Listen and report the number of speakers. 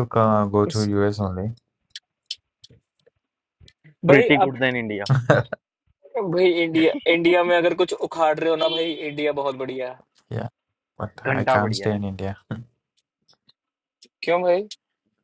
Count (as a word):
three